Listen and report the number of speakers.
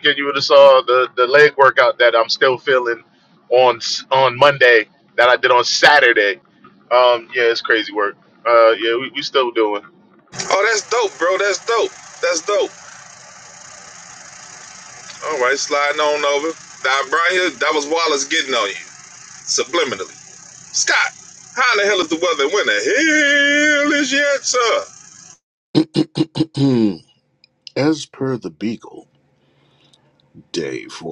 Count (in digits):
3